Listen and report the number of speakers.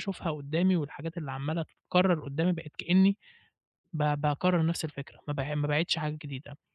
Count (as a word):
one